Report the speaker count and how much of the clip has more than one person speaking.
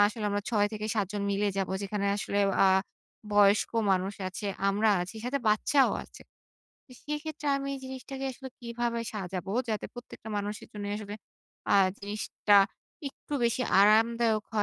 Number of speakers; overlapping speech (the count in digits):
1, no overlap